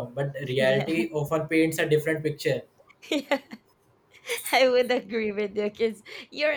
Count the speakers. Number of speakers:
two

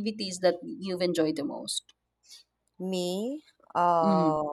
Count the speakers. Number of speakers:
two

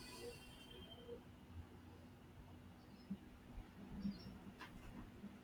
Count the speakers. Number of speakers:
zero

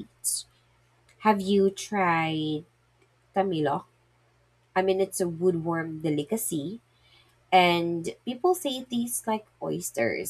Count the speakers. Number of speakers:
one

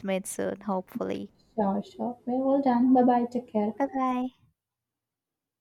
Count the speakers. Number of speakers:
two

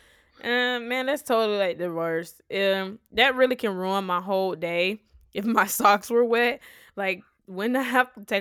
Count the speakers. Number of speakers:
one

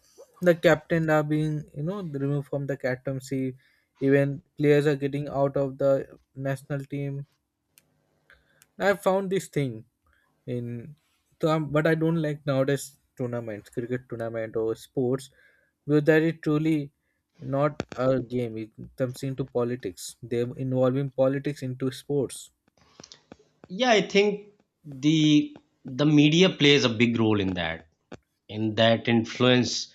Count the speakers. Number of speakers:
two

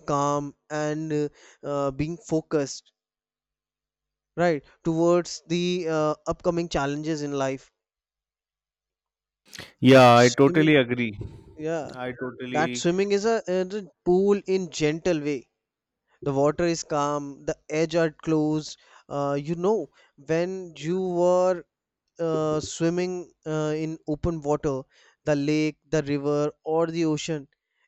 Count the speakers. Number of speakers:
two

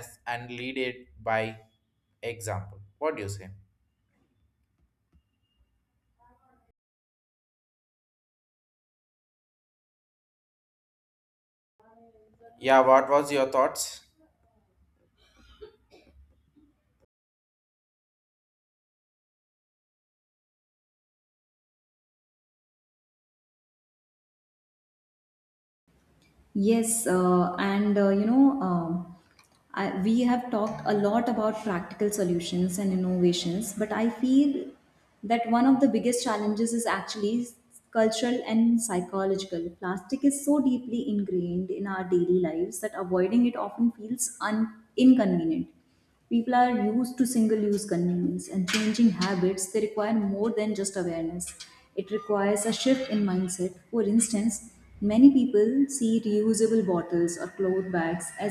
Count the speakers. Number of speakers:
two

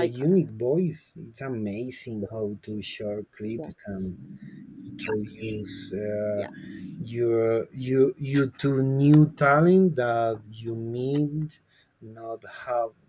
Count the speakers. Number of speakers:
two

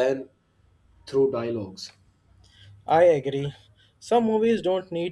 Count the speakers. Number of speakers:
two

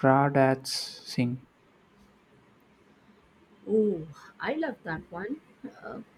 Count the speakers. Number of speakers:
two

